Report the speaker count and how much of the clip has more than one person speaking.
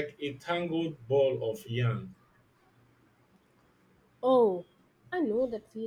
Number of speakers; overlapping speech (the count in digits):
2, no overlap